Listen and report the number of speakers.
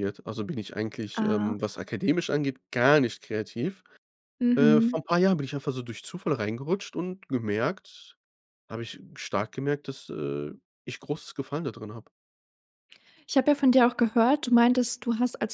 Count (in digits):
2